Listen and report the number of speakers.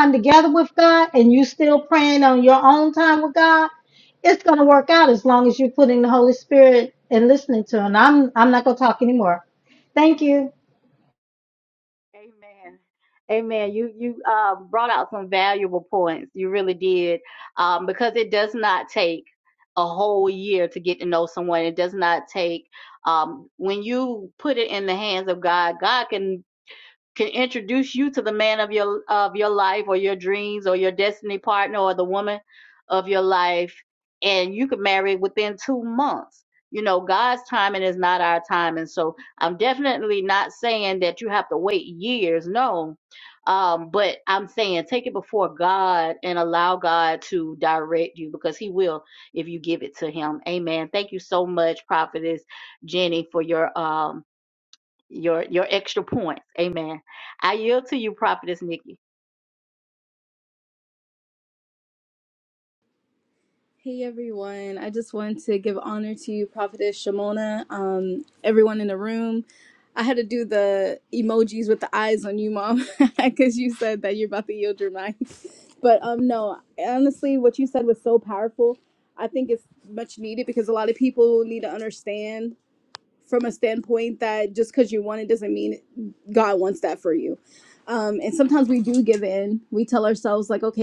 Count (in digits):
3